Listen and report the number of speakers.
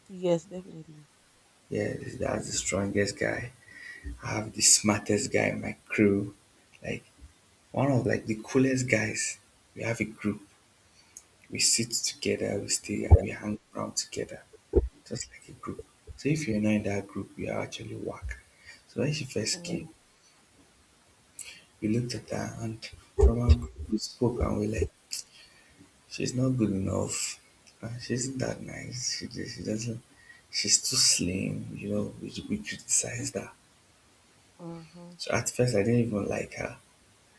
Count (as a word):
two